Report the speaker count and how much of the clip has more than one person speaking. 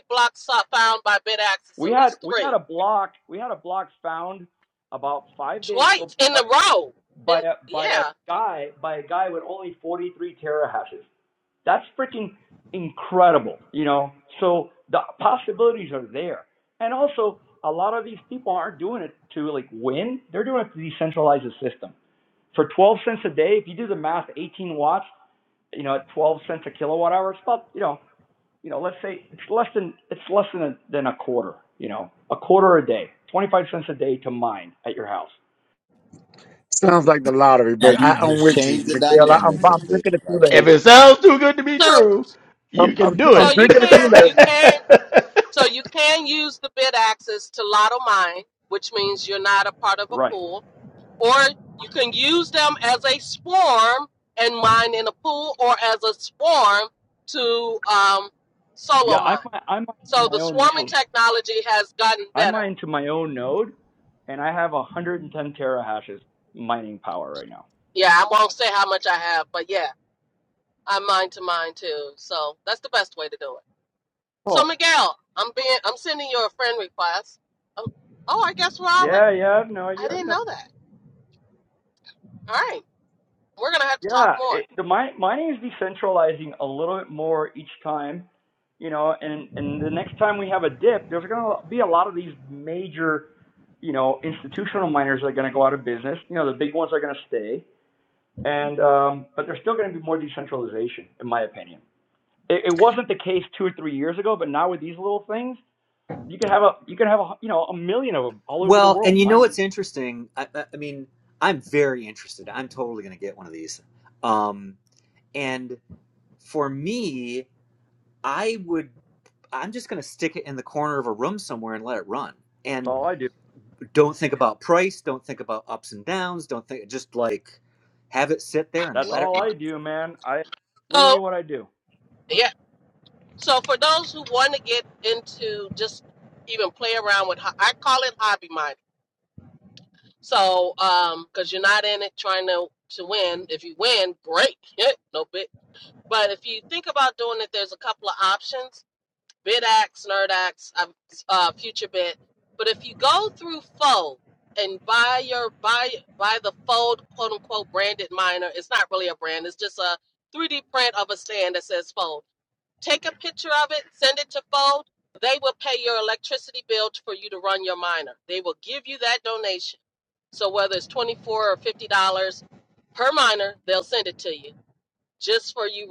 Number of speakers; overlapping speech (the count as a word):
six, about 6%